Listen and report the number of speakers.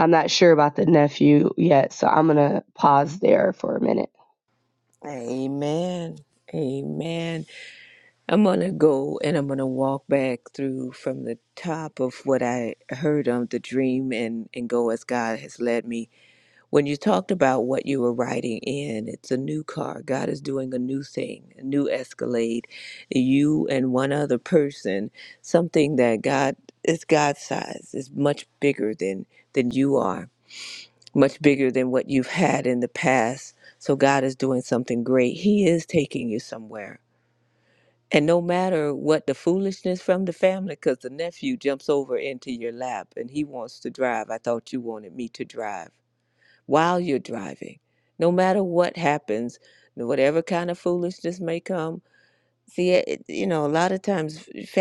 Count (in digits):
2